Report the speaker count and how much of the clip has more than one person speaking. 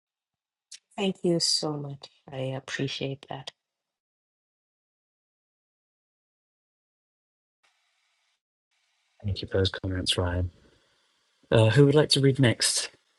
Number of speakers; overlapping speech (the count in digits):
2, no overlap